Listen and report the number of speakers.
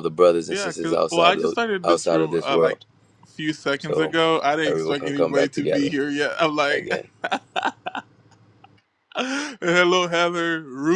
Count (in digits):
2